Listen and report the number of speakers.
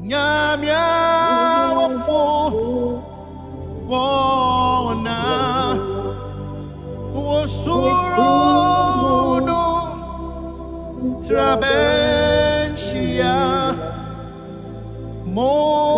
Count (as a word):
two